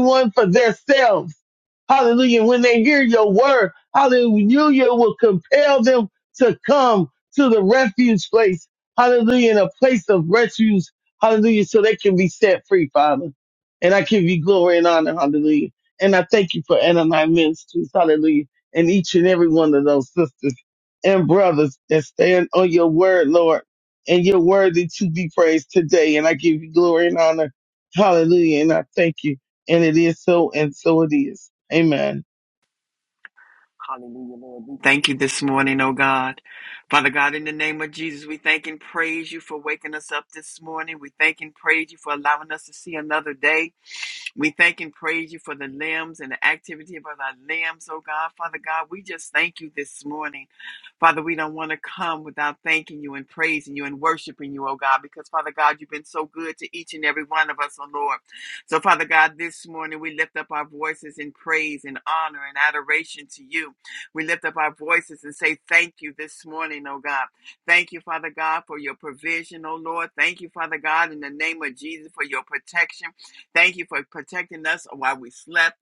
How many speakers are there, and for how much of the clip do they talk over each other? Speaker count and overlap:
2, no overlap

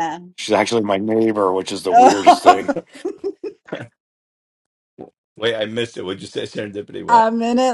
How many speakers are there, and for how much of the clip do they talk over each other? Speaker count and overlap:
3, about 12%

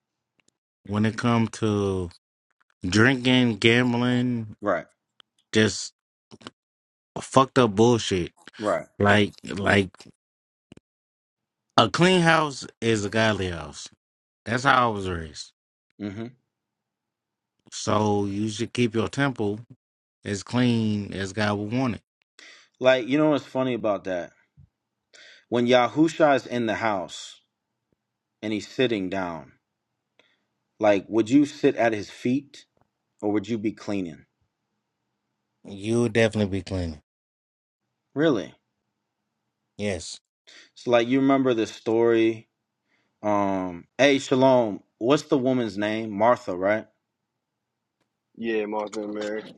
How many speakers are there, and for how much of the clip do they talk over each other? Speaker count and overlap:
3, no overlap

